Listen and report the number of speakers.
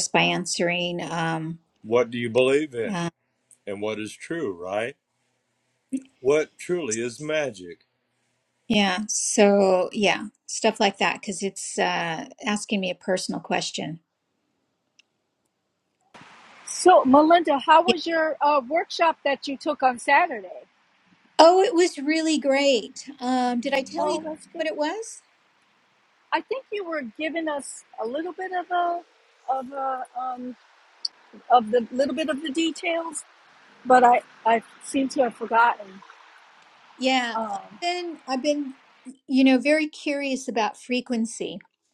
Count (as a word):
three